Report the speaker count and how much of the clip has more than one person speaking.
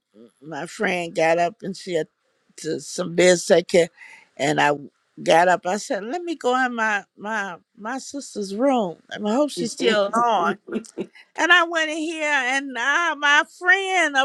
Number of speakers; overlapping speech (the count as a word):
one, no overlap